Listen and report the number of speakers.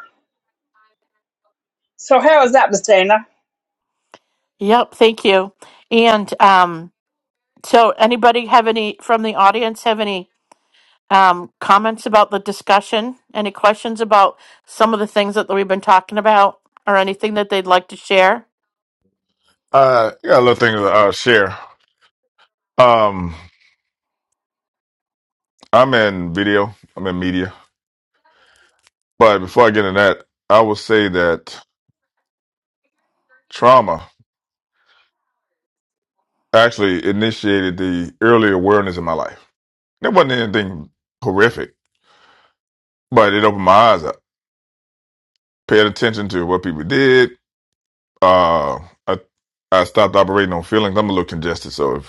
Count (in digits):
3